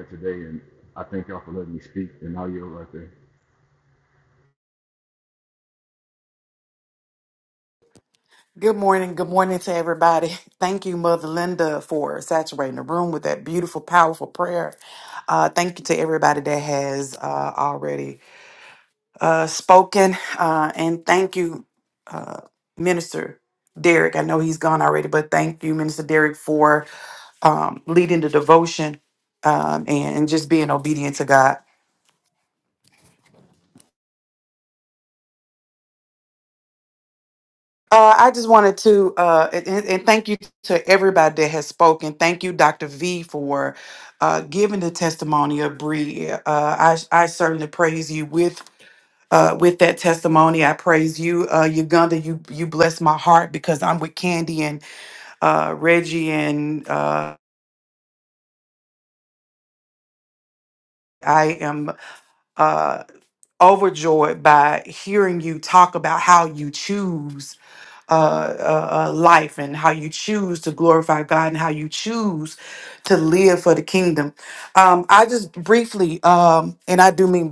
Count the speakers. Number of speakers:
2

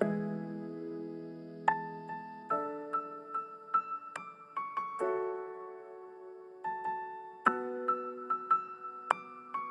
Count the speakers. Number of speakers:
0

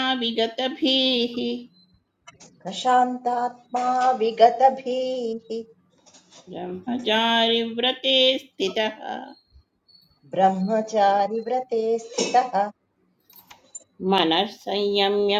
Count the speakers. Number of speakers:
2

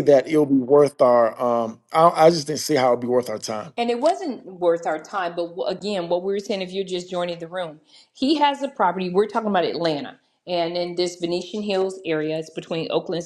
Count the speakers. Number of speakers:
2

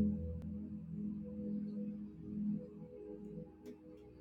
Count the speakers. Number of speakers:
0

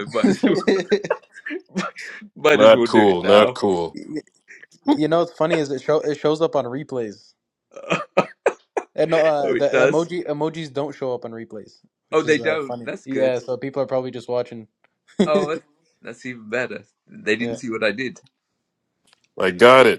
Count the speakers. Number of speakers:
3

